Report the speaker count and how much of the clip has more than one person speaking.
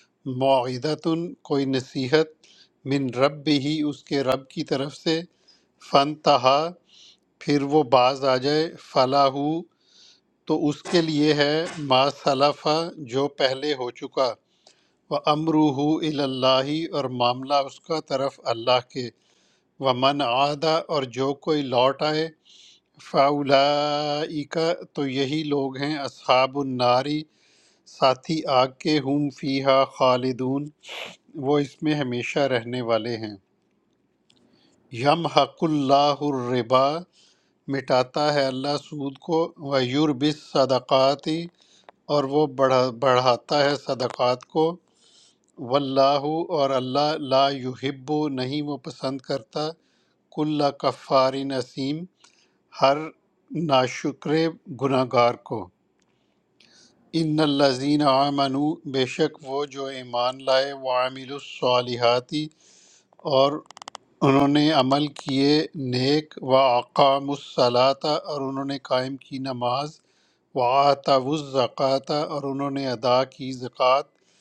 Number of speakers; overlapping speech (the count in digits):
1, no overlap